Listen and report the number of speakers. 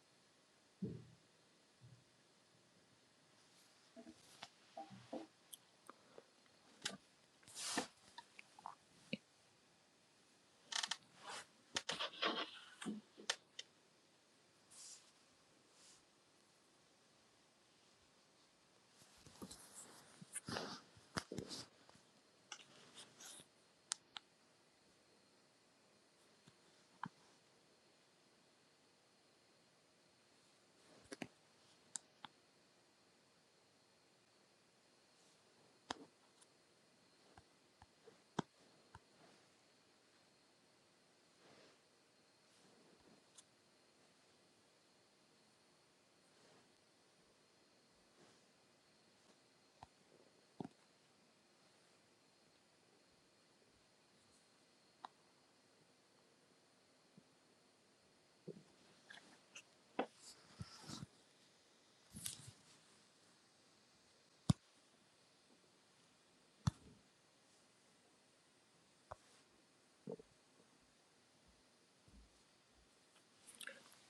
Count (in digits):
0